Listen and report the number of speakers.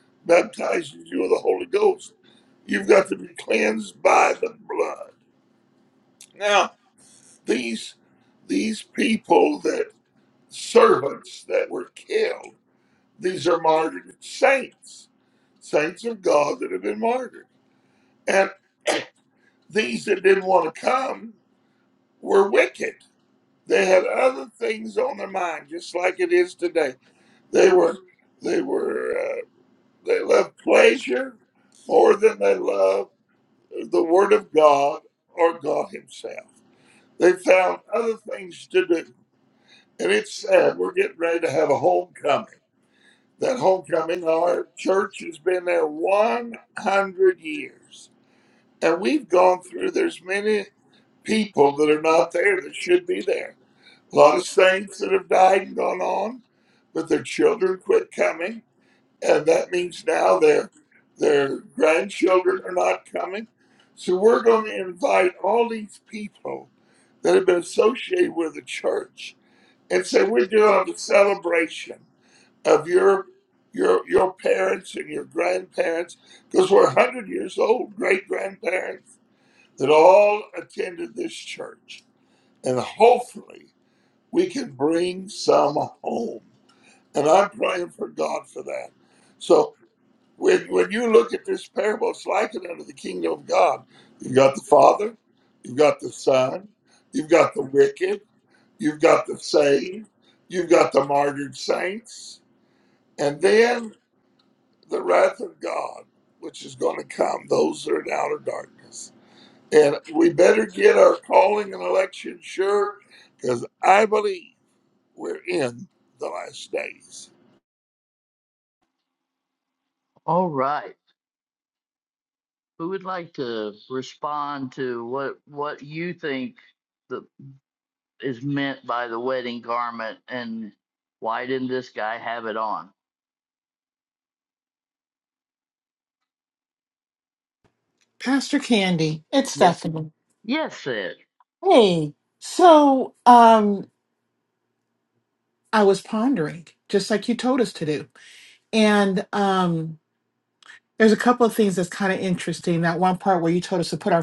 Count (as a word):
three